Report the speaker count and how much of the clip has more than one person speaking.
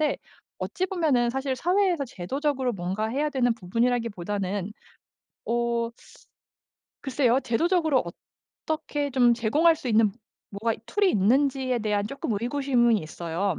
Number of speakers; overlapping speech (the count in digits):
1, no overlap